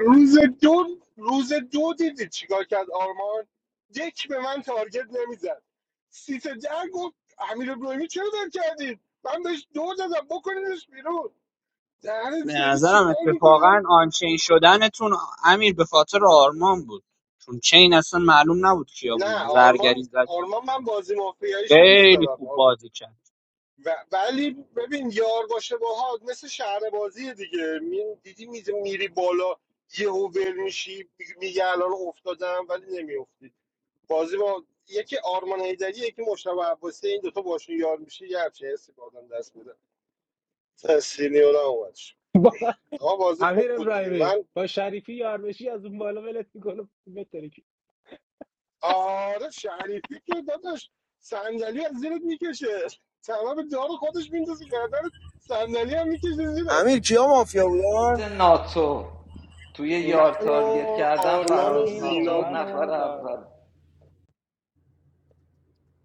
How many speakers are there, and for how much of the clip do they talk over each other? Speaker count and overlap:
five, about 11%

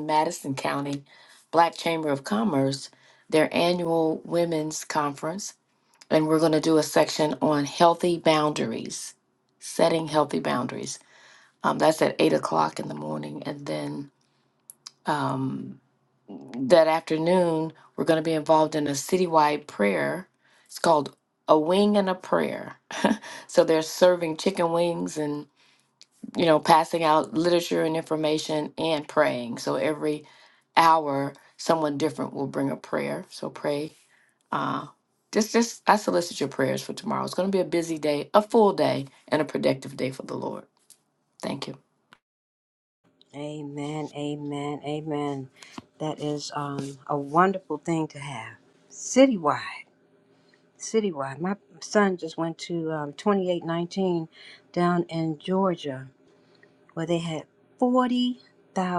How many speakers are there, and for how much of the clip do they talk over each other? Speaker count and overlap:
two, no overlap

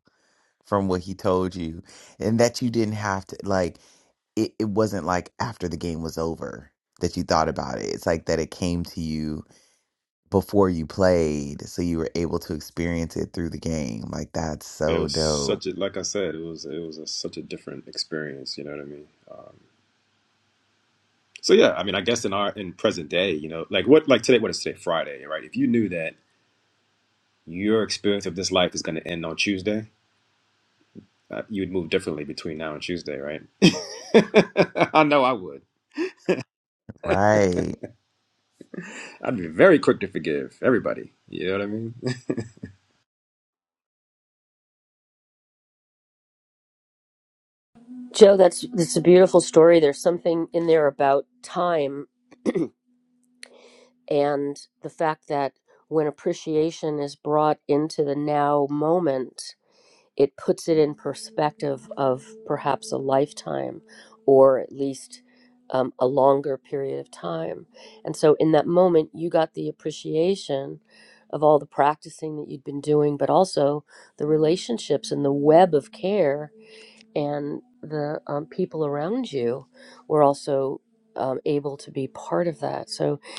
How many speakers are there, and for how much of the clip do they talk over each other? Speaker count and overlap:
three, about 1%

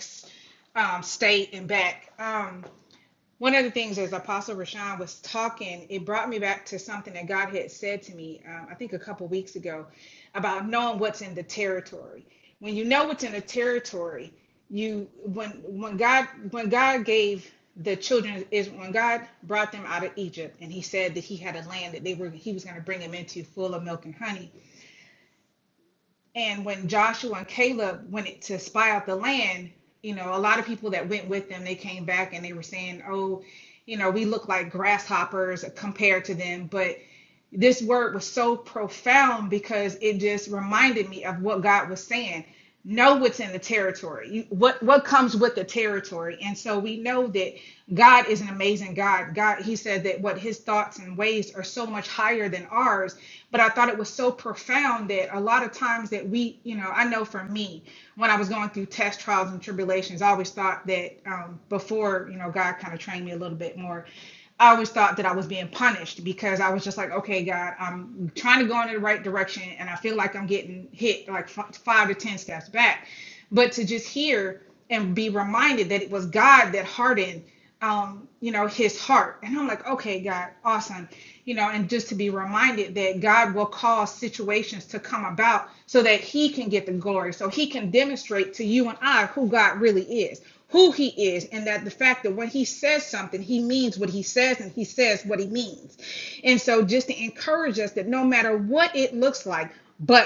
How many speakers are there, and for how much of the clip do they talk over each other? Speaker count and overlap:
one, no overlap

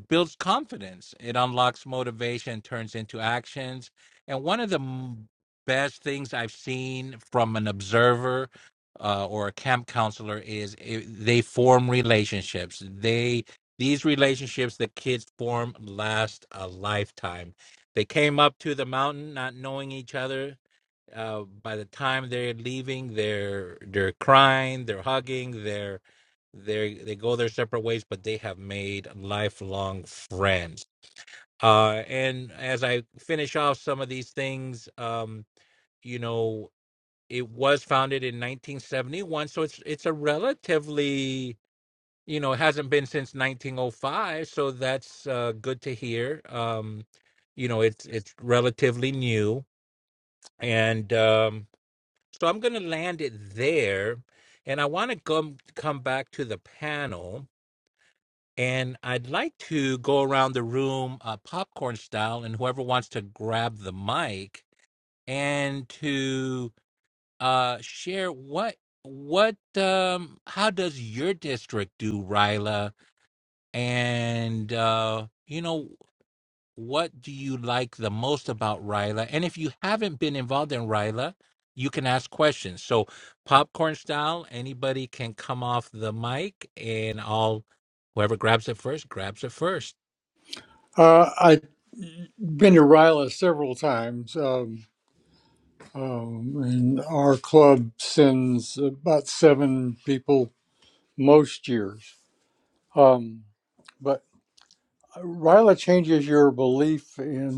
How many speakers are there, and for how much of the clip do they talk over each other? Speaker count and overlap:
two, no overlap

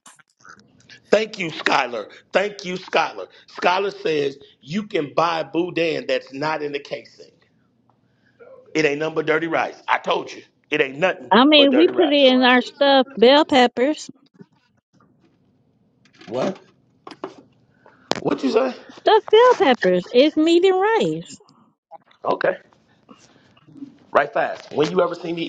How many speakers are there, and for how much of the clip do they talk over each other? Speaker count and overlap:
two, about 4%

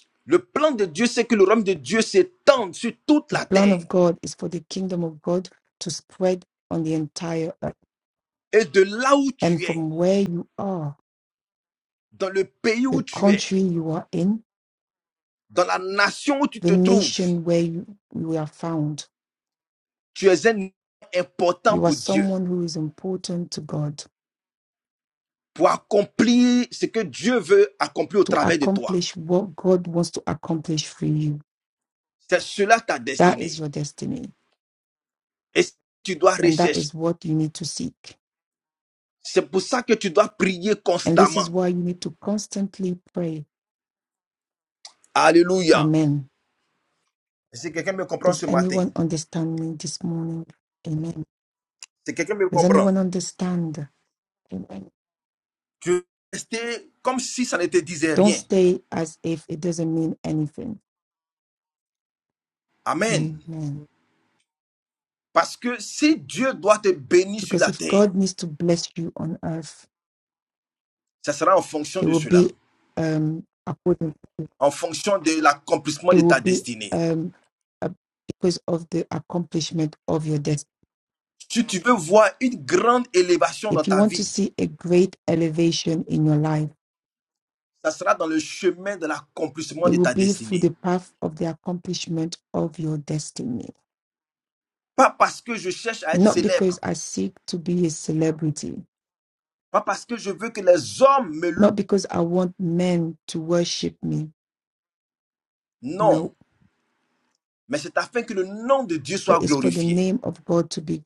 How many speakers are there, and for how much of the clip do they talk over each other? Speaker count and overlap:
two, about 10%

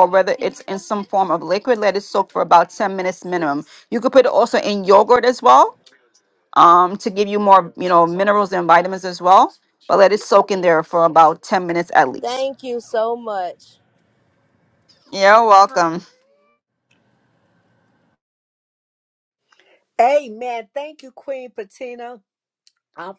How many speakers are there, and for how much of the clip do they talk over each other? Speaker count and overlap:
three, no overlap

